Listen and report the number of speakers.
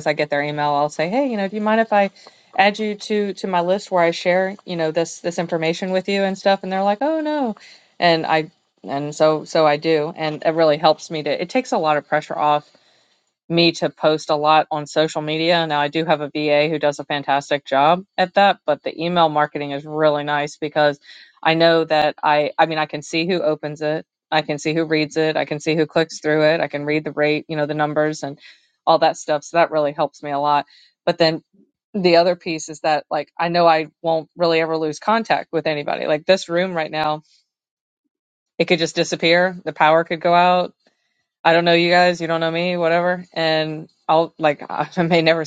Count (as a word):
one